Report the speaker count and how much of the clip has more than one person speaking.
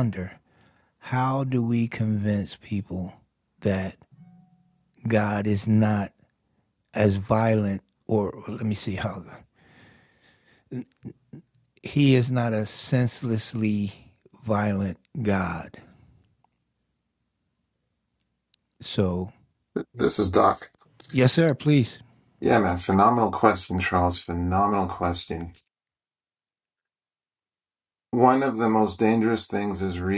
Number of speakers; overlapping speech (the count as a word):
two, no overlap